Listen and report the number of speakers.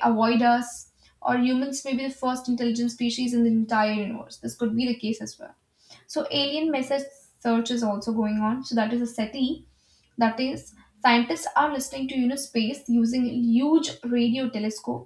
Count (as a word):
one